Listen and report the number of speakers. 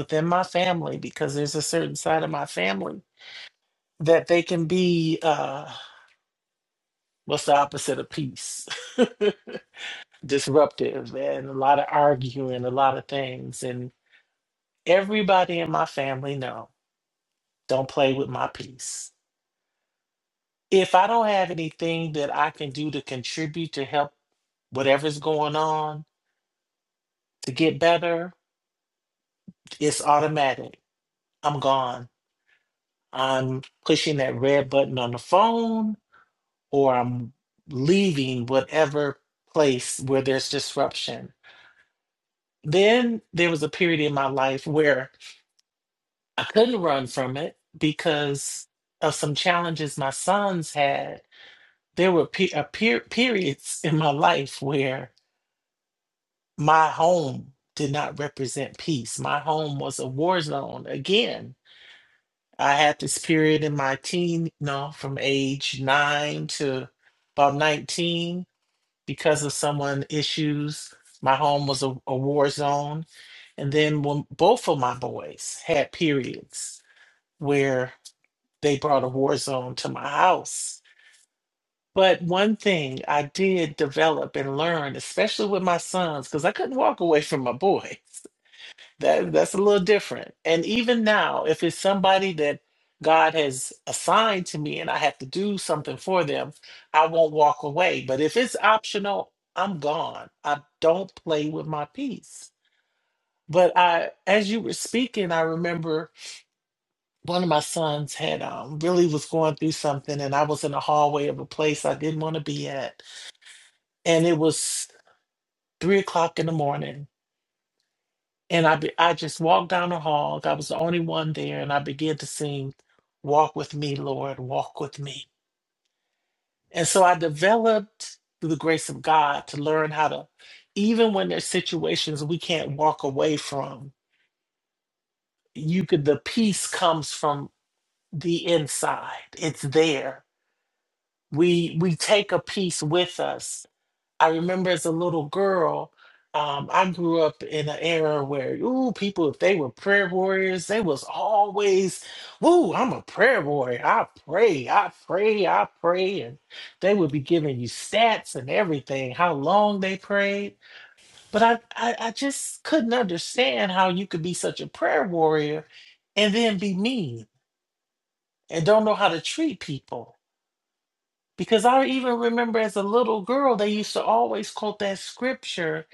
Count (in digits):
1